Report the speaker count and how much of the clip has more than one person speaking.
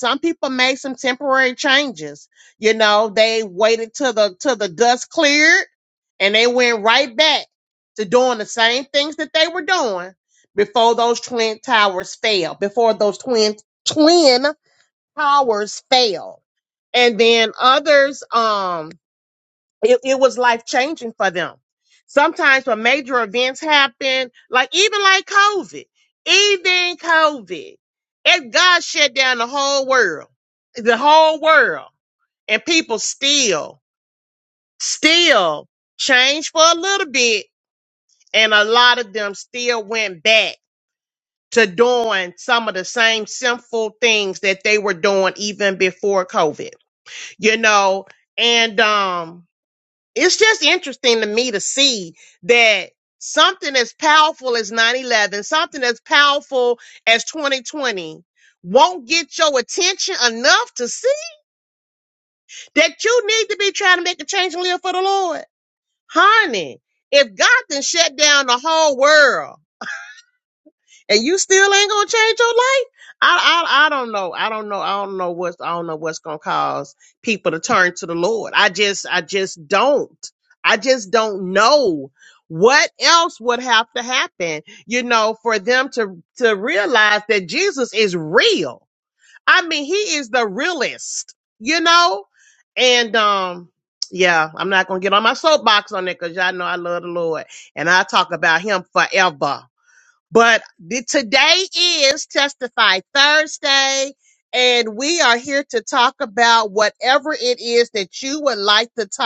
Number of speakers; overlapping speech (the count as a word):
one, no overlap